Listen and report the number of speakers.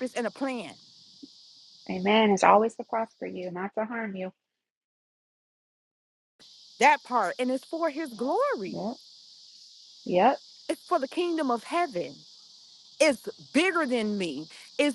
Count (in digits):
2